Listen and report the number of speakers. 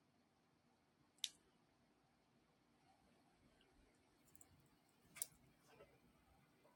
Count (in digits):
0